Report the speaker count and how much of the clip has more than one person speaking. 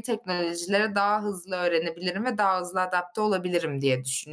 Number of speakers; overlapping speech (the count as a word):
one, no overlap